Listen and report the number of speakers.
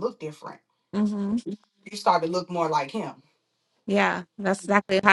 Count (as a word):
two